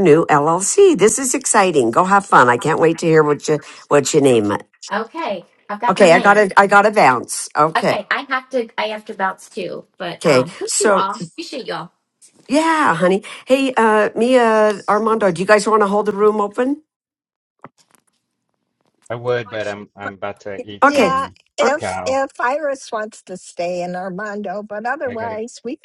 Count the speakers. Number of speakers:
4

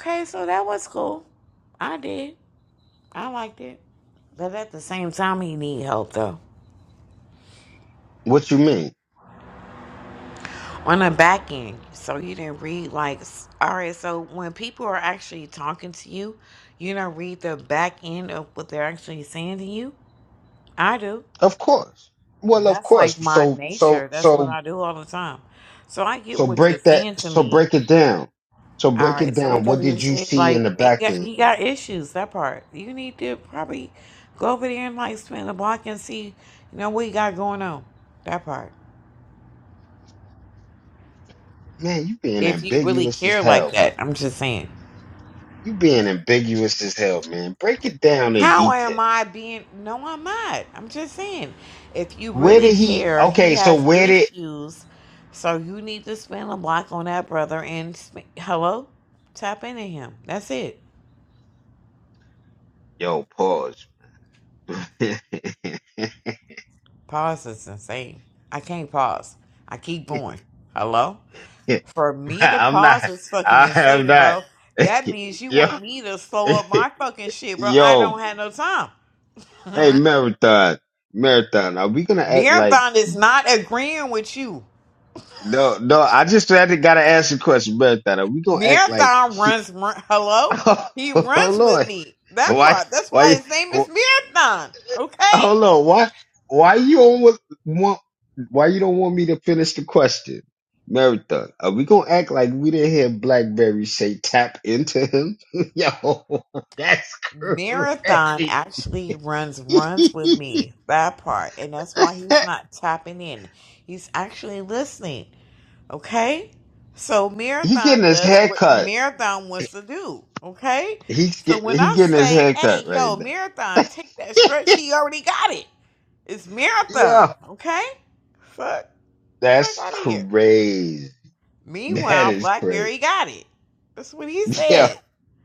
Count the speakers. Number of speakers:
2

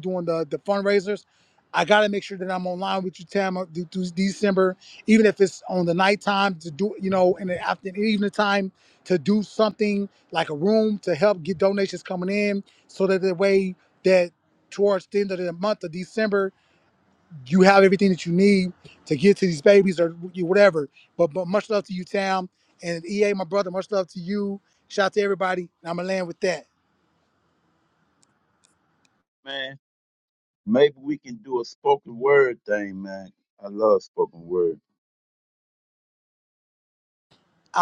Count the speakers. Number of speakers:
2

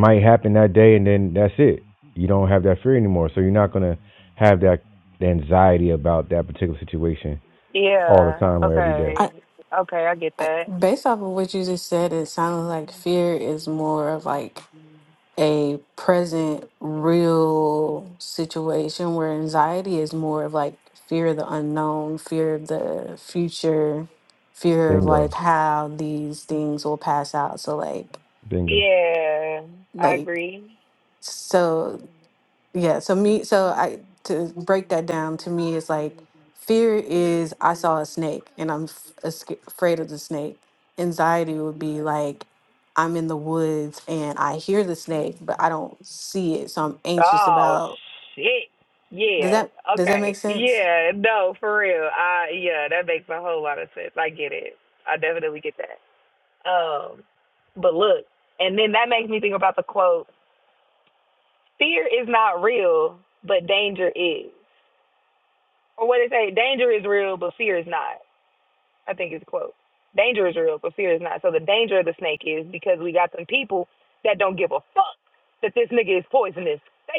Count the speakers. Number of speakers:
3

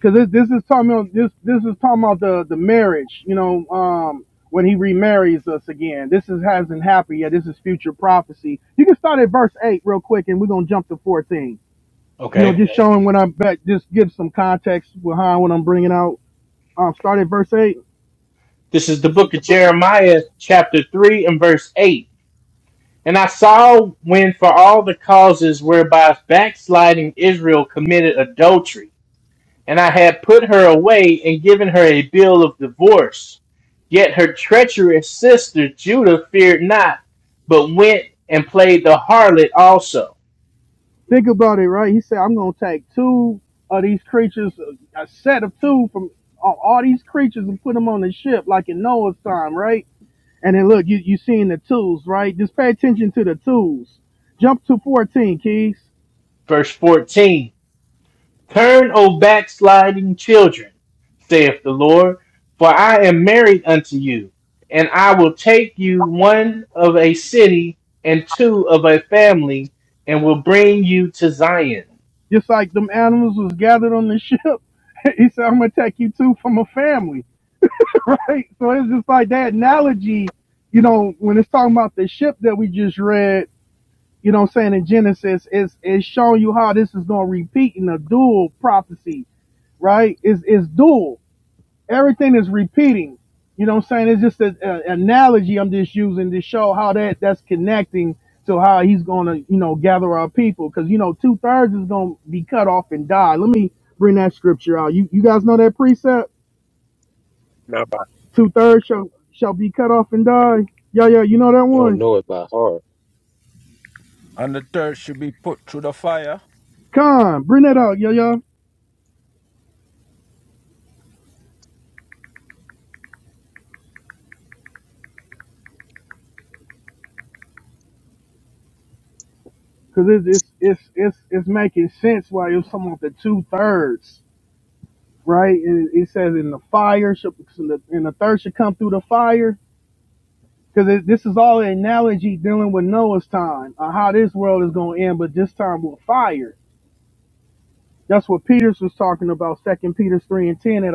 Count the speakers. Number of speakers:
4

